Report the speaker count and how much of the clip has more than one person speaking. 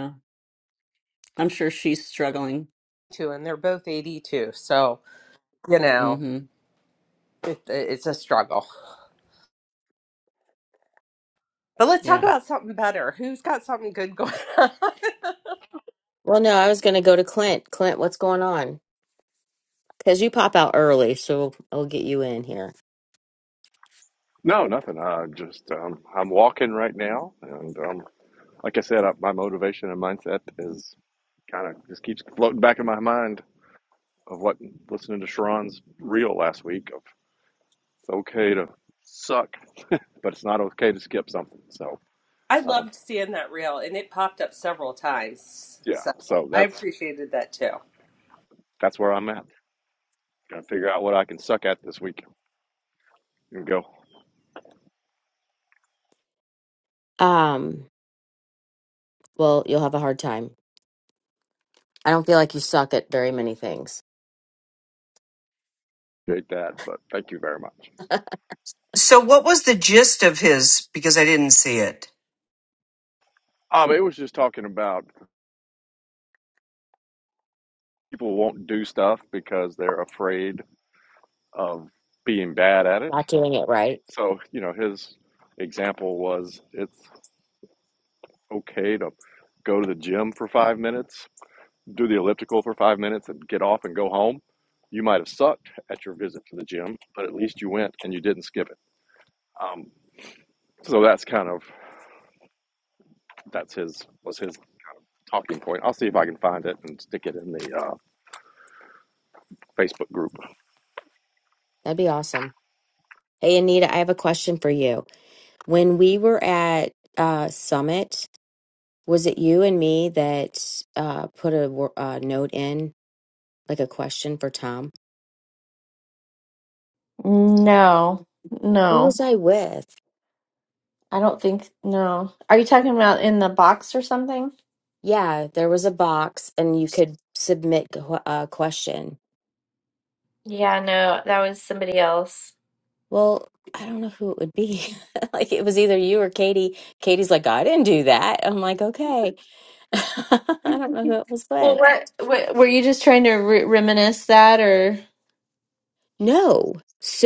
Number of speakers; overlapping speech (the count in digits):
6, about 1%